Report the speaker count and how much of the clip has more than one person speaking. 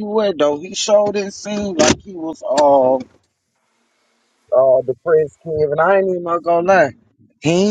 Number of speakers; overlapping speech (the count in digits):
1, no overlap